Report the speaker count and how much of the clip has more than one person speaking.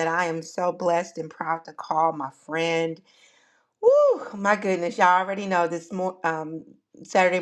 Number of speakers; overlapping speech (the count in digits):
1, no overlap